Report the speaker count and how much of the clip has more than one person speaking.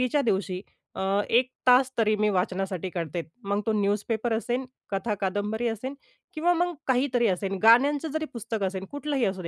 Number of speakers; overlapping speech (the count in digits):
1, no overlap